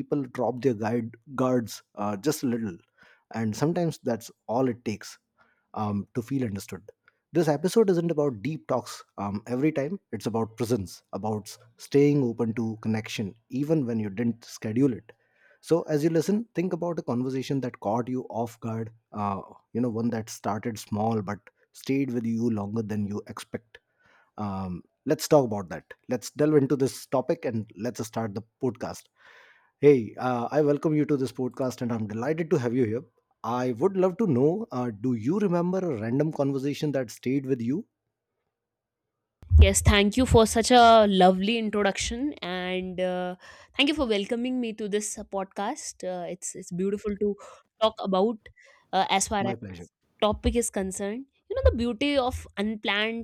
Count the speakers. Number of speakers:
two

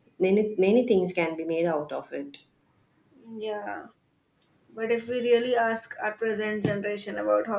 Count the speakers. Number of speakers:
two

